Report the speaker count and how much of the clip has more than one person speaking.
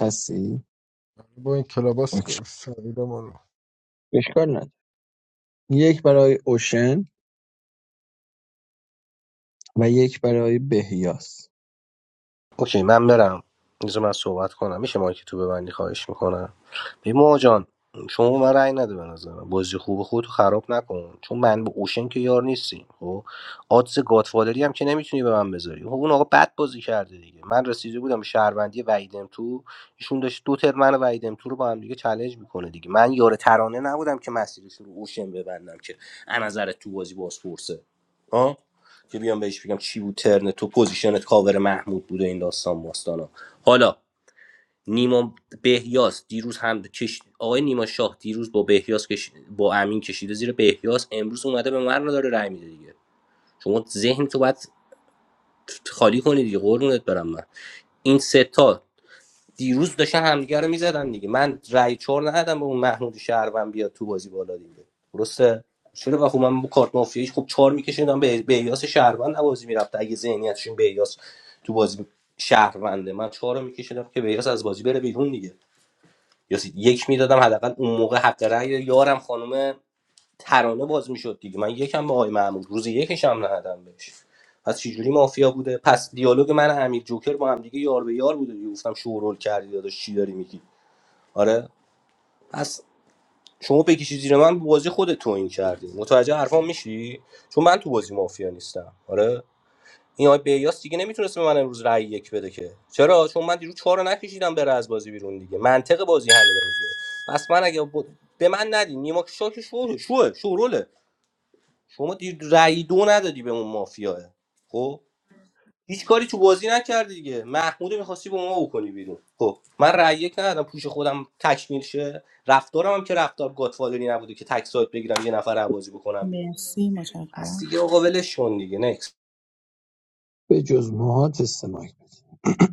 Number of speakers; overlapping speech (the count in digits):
4, about 1%